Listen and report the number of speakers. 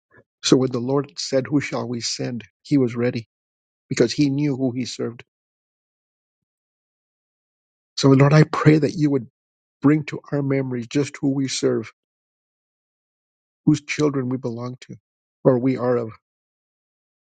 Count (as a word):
one